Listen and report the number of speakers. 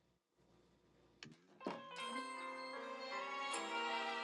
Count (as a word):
zero